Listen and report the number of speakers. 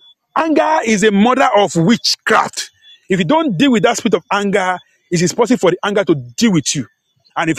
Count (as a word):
one